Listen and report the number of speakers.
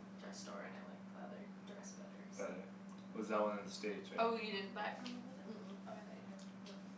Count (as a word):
three